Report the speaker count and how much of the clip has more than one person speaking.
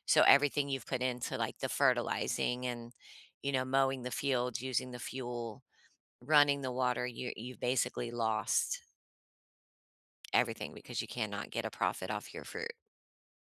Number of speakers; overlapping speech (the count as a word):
one, no overlap